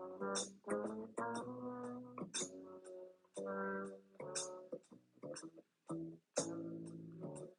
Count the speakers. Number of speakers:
0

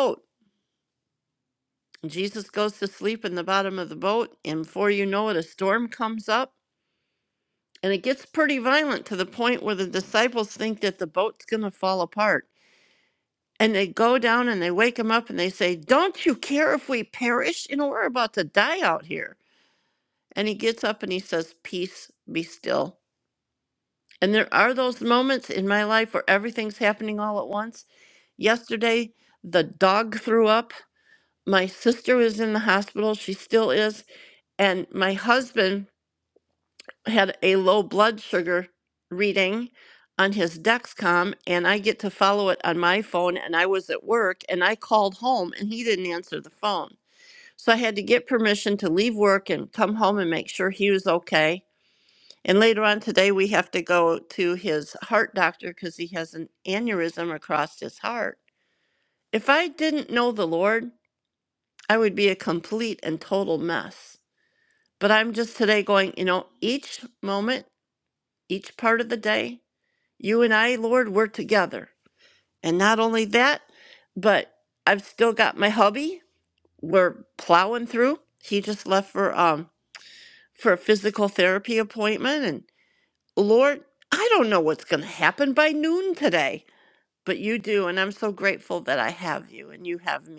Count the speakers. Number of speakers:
1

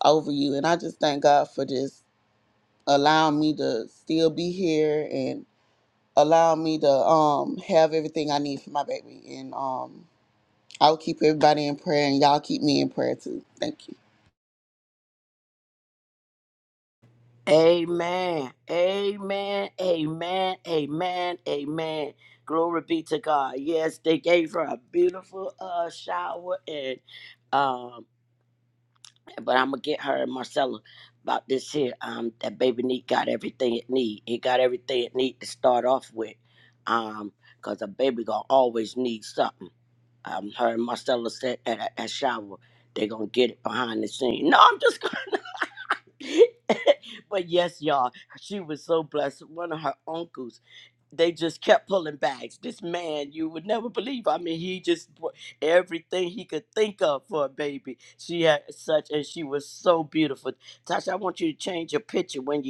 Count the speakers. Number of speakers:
2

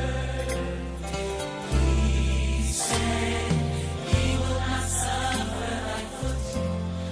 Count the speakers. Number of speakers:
0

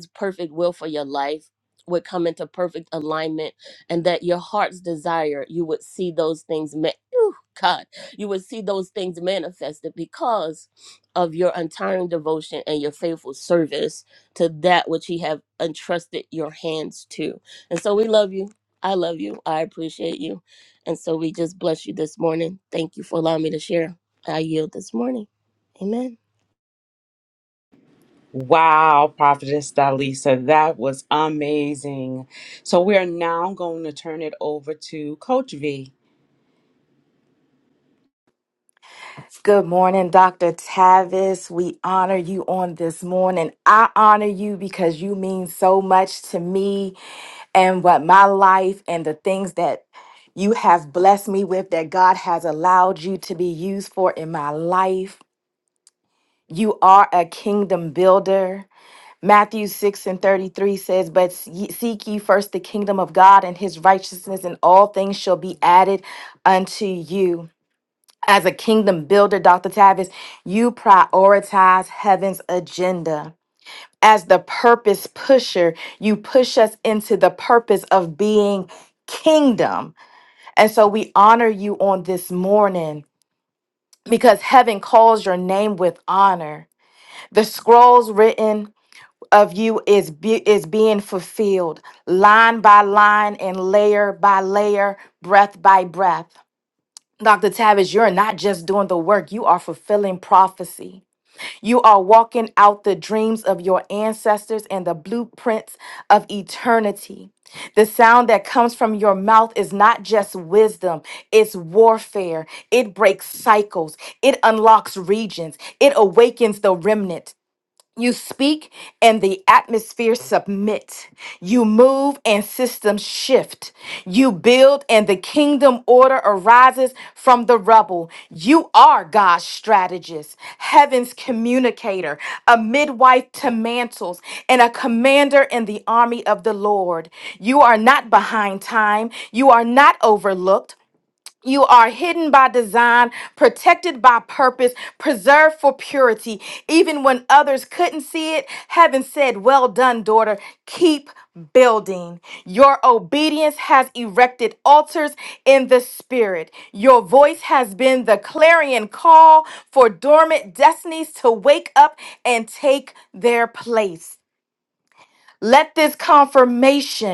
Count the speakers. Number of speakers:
3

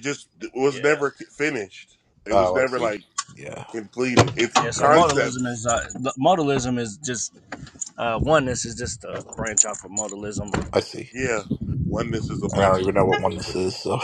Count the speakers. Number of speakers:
3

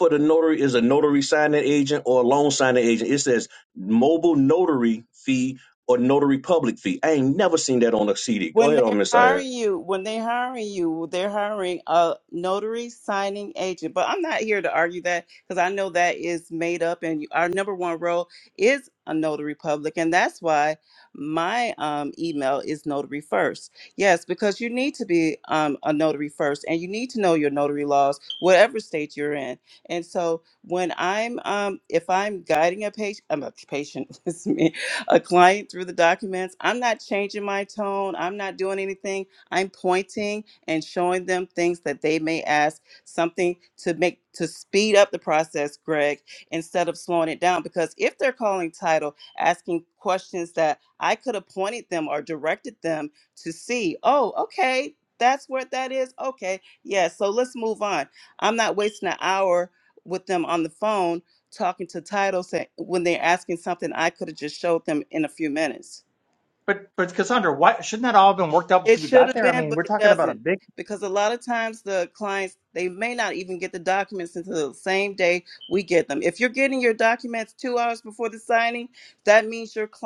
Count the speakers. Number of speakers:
3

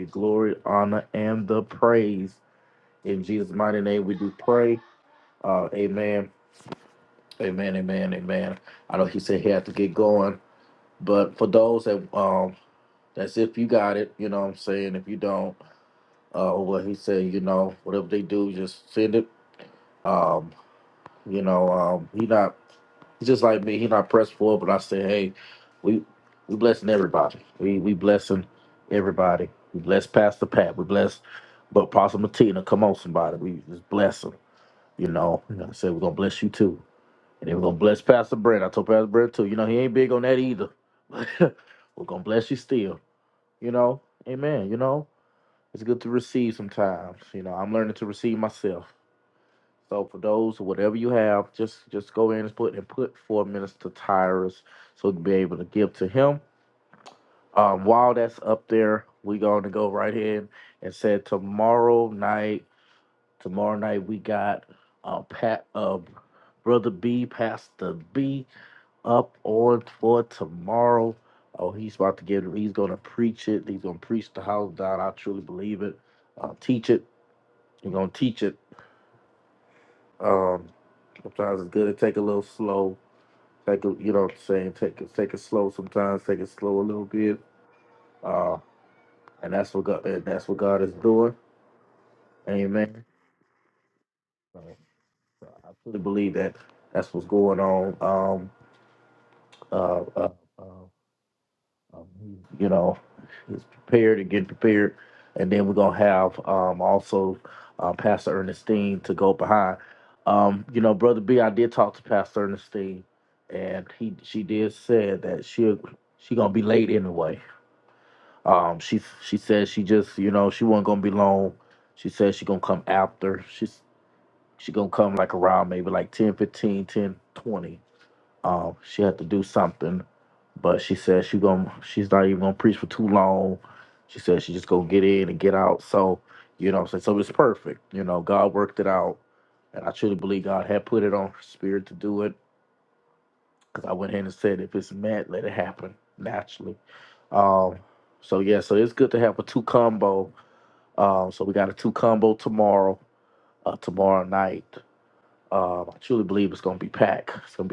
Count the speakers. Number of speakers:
1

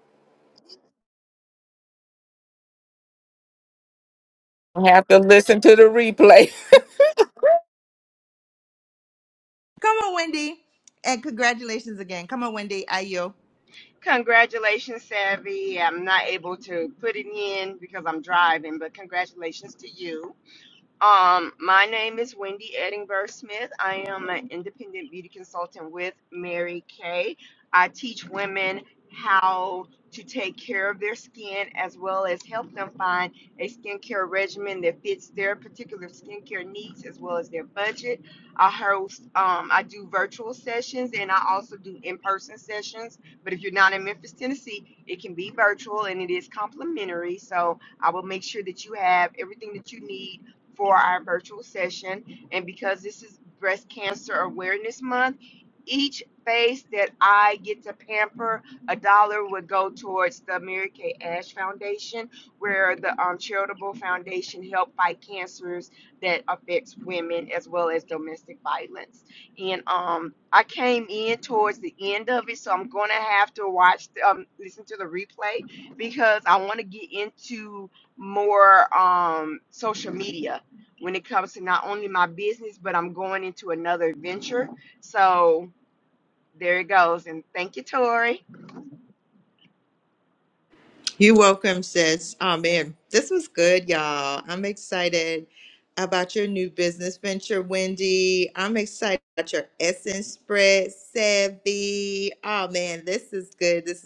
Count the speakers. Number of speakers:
3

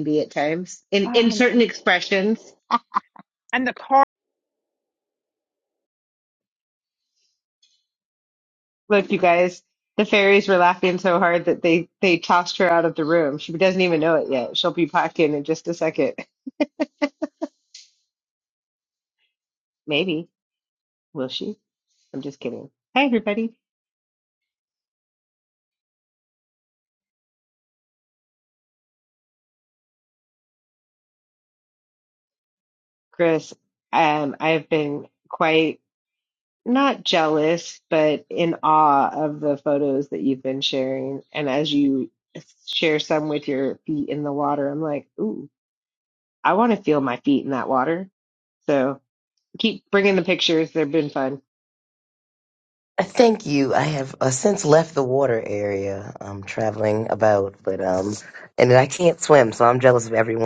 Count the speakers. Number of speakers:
3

